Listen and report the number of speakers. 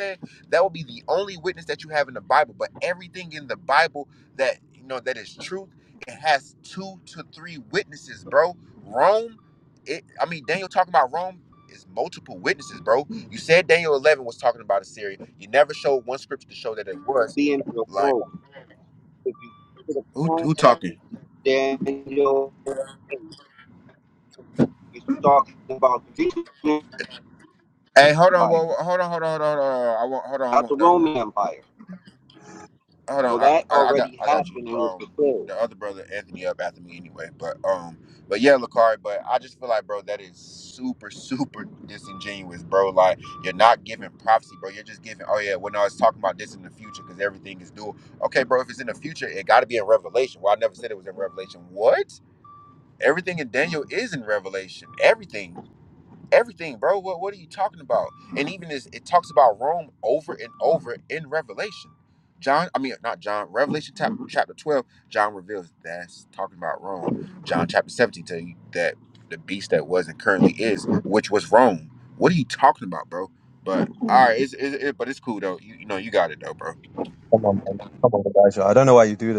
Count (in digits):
3